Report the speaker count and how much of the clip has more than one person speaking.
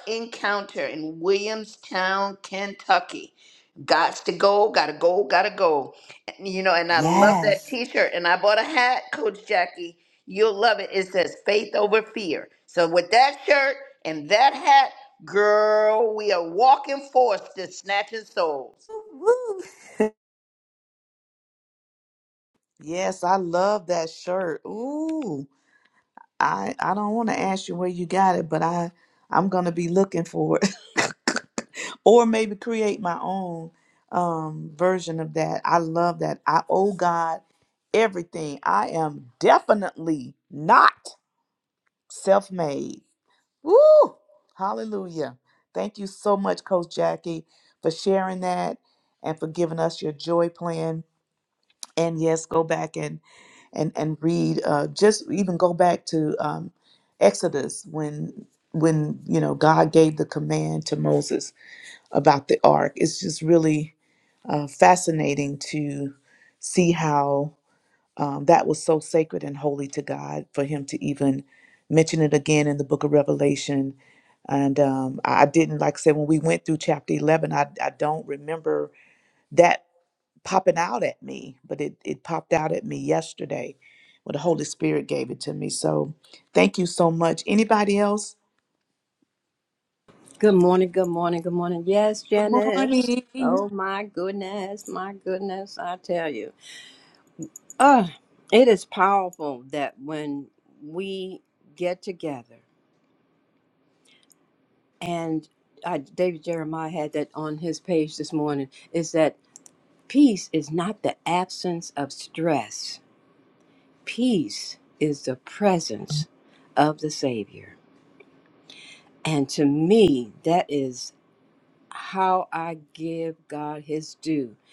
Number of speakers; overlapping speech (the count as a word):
four, about 1%